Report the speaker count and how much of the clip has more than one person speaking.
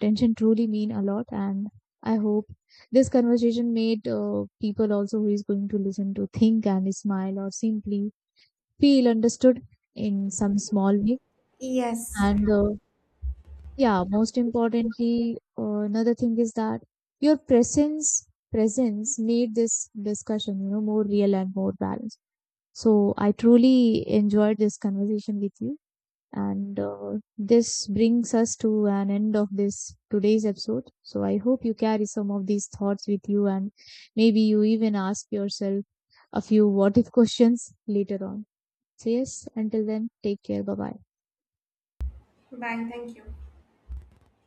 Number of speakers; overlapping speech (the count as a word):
two, no overlap